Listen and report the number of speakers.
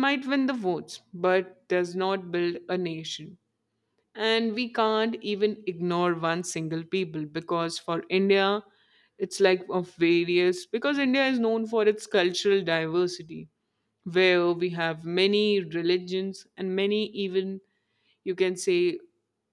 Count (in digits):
1